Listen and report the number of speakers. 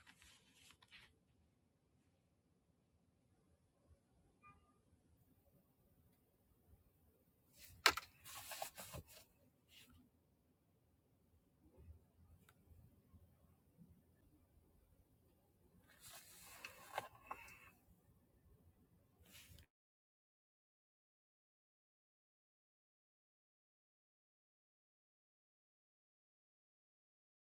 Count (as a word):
zero